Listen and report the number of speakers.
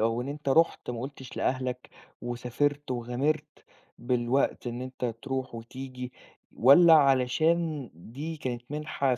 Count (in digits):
1